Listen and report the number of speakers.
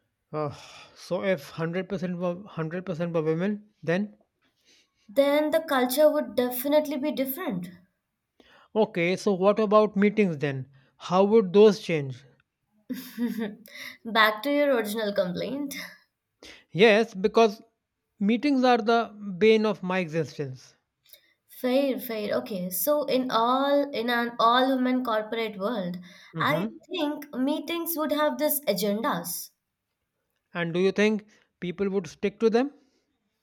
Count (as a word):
two